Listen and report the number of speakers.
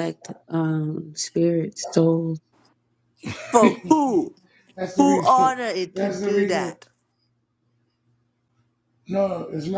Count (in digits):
3